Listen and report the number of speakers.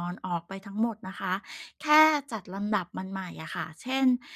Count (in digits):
1